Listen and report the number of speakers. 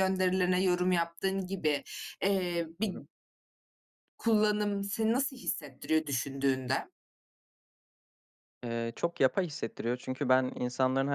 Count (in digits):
2